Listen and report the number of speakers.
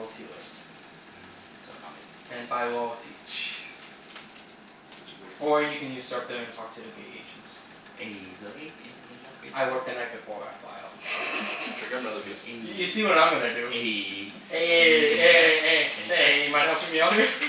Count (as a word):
three